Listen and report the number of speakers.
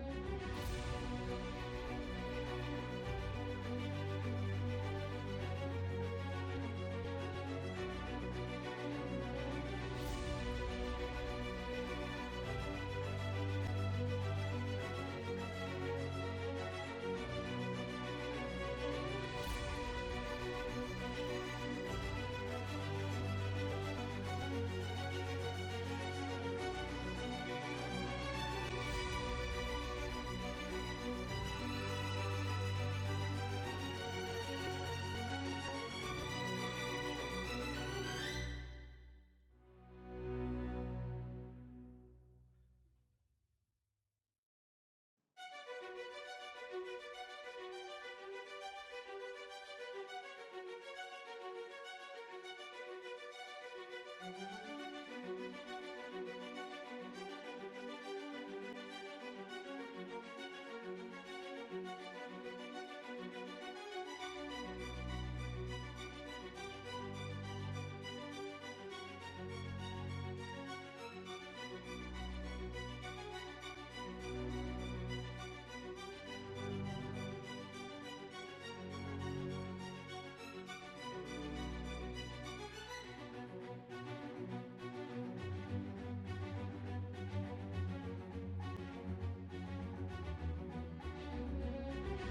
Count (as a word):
zero